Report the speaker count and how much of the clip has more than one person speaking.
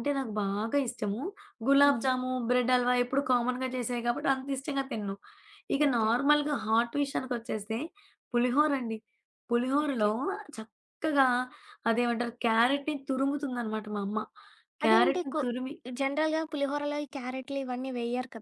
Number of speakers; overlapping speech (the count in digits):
2, about 8%